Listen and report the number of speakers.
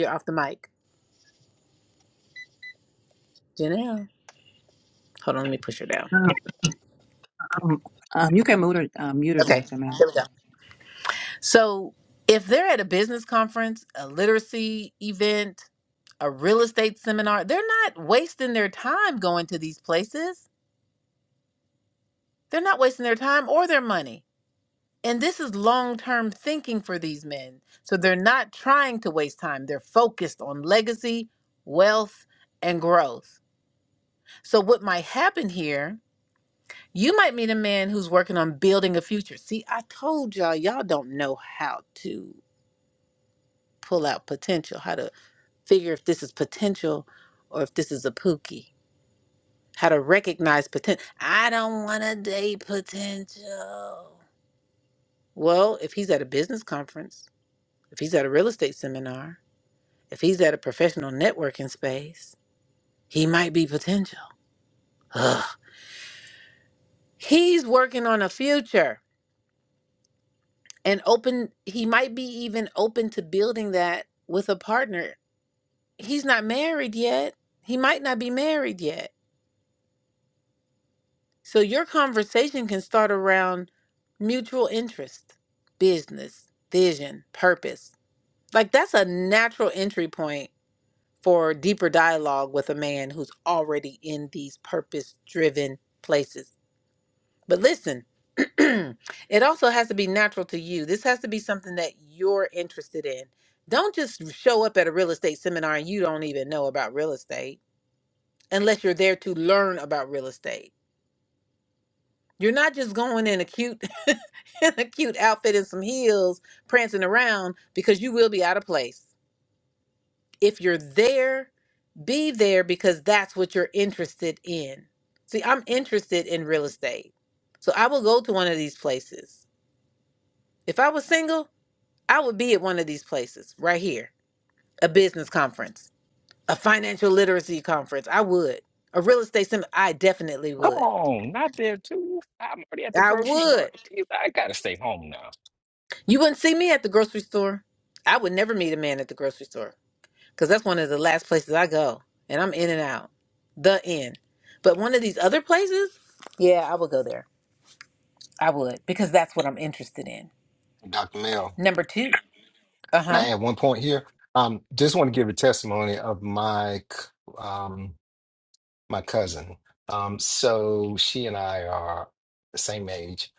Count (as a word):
four